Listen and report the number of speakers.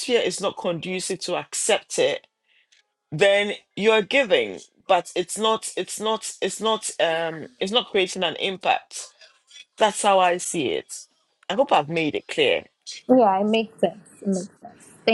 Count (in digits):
2